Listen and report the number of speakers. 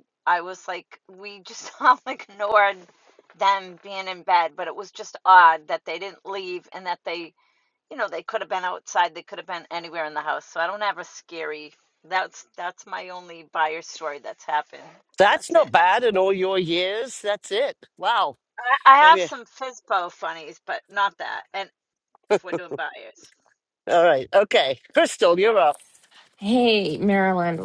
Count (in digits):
3